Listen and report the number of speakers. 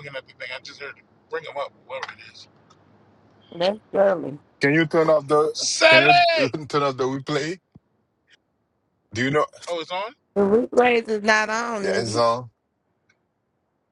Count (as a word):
three